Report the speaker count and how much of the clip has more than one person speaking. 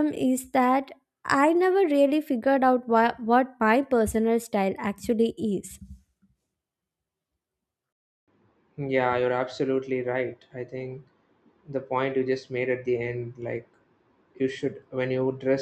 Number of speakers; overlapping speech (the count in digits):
2, no overlap